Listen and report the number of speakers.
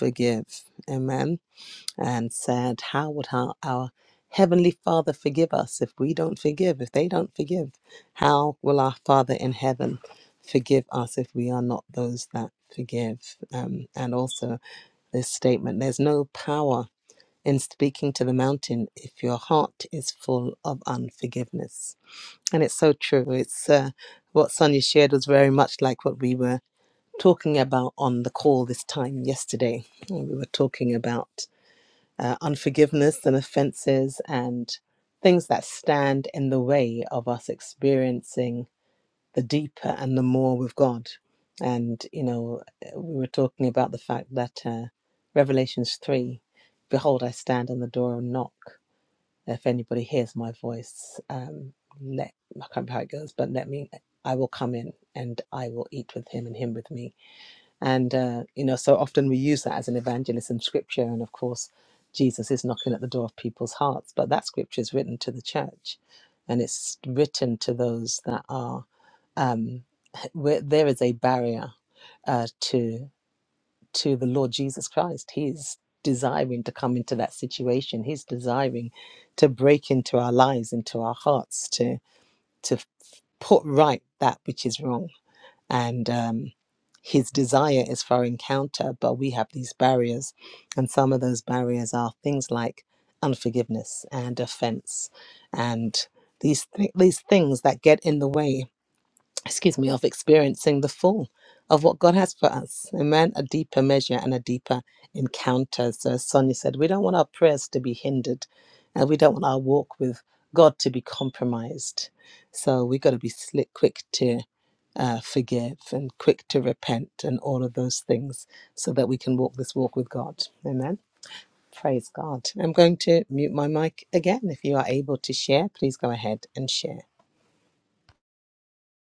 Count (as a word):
one